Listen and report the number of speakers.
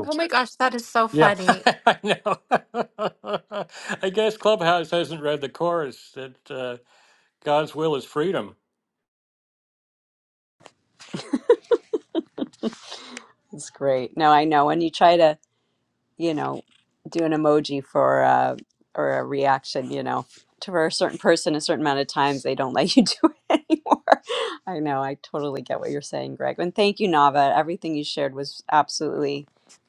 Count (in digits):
3